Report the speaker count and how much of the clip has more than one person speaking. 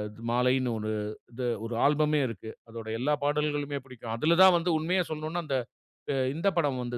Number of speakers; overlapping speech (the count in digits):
1, no overlap